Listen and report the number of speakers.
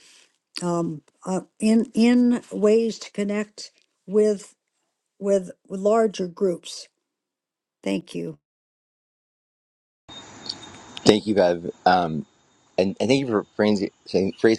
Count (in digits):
2